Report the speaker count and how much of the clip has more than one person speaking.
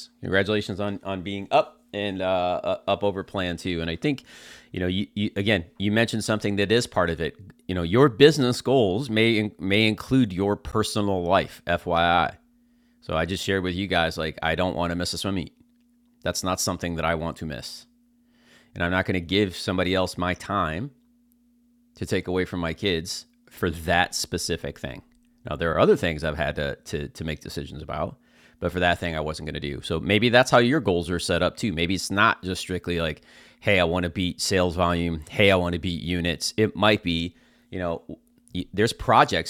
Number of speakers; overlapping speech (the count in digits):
1, no overlap